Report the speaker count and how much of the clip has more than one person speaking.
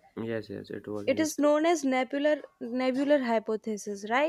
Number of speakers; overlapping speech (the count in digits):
2, about 5%